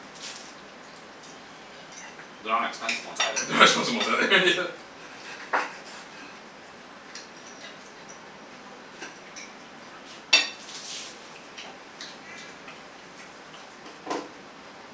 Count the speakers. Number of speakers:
two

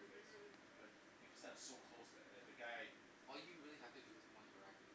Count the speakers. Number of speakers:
two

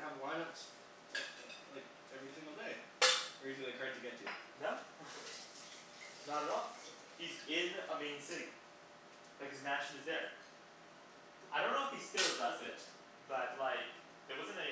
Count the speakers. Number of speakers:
two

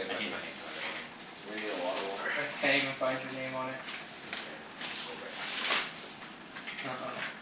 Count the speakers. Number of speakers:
three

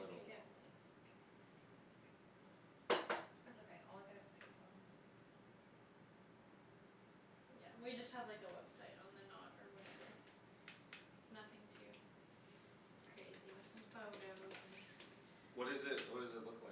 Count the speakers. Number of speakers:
three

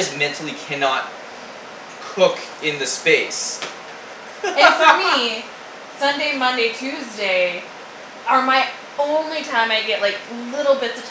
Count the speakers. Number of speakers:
two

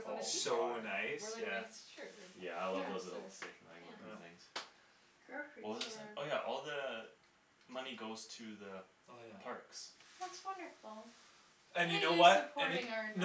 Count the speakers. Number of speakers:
four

